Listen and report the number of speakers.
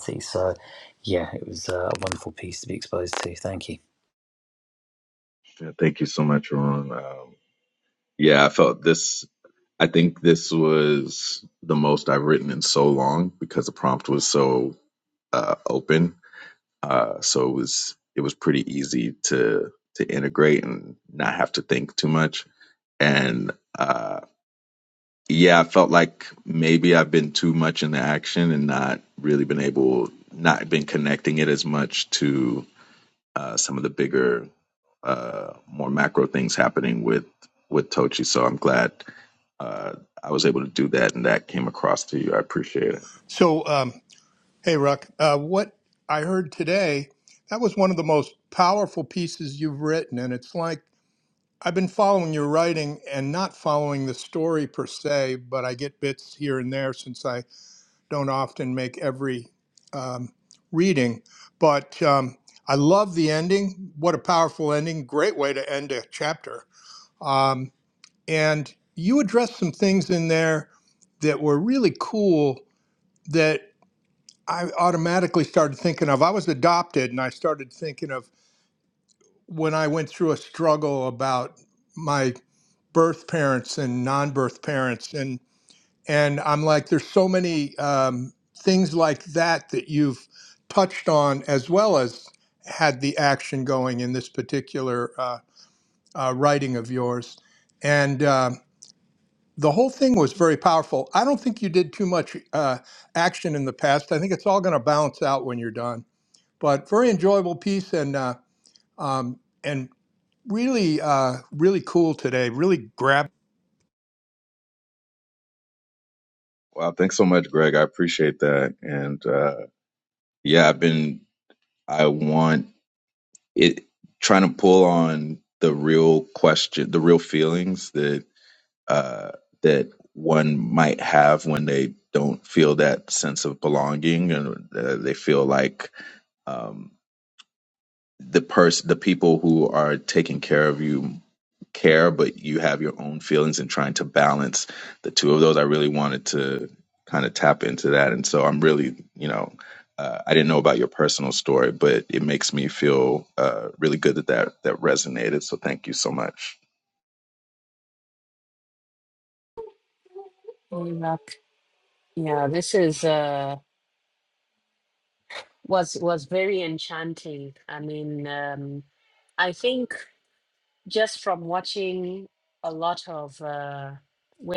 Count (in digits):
4